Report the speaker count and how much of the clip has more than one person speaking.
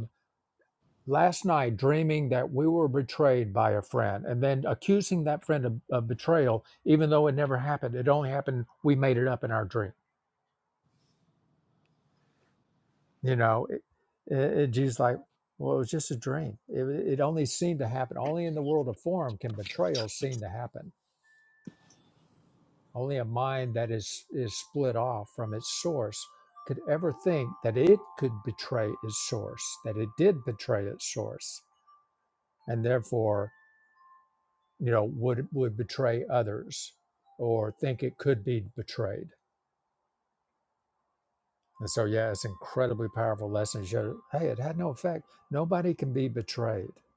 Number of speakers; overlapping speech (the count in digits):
1, no overlap